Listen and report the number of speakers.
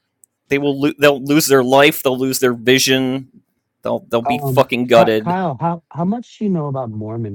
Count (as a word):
two